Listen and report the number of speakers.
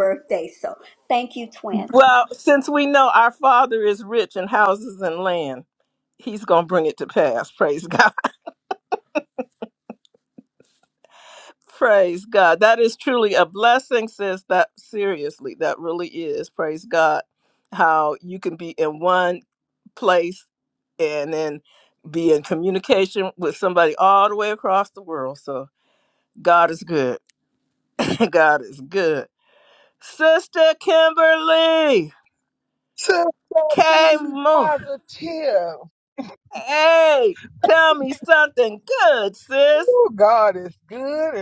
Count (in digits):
3